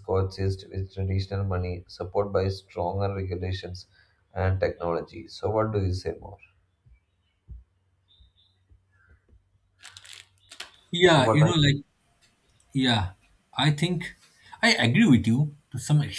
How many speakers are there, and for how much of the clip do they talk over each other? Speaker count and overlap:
2, about 2%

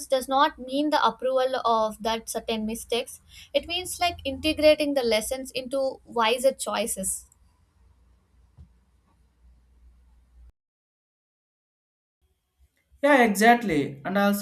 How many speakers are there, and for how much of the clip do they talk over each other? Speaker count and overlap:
2, no overlap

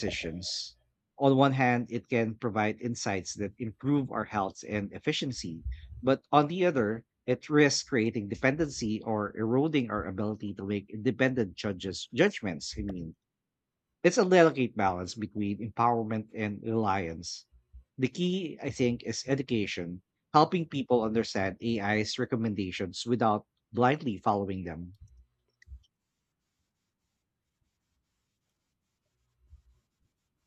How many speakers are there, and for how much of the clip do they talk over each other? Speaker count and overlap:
1, no overlap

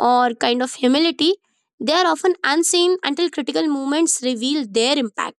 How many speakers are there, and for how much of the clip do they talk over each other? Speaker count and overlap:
1, no overlap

